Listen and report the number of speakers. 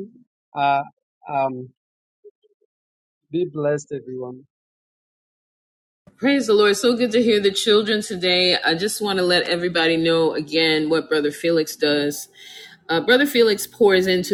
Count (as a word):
two